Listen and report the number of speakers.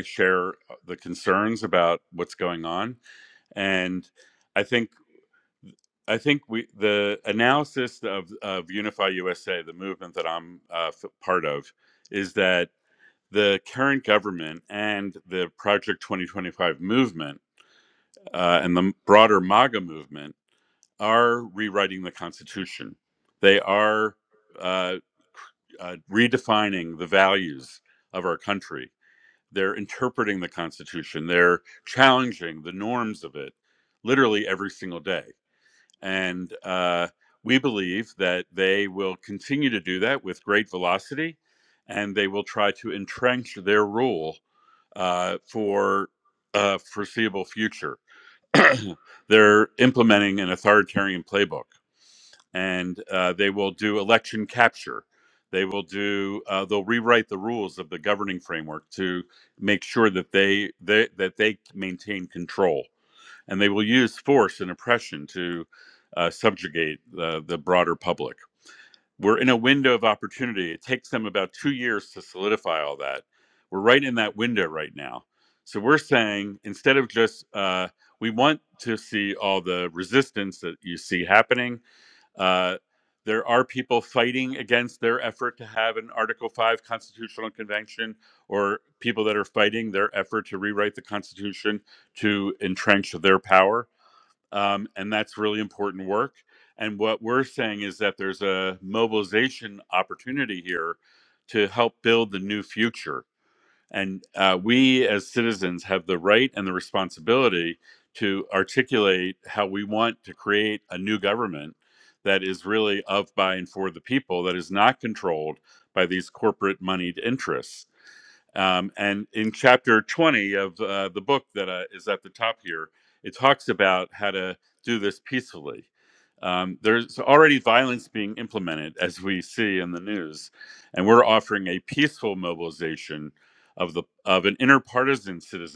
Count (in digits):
1